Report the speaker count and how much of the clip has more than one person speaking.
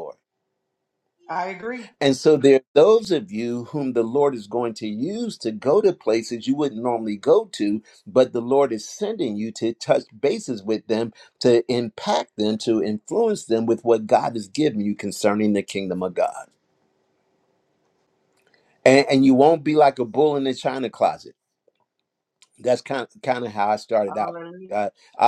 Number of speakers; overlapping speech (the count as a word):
two, about 1%